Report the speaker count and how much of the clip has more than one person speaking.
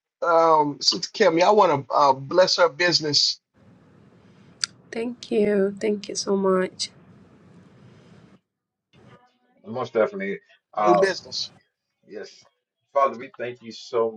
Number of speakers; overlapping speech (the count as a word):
three, about 2%